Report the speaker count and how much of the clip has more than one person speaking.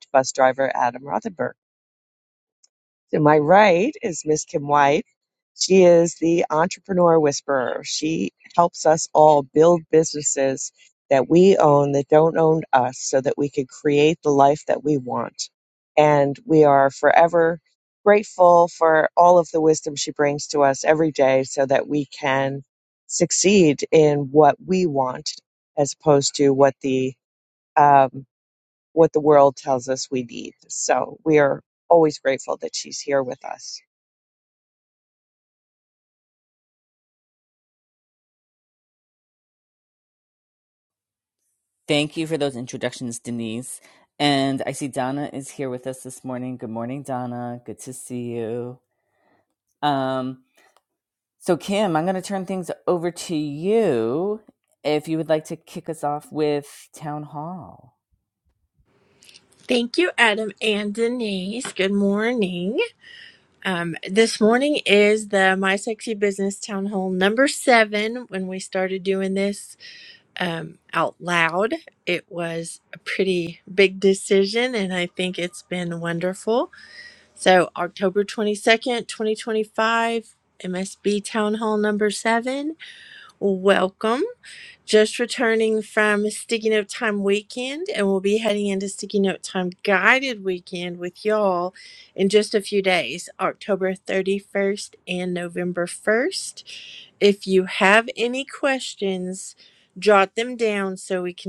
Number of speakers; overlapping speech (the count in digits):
3, no overlap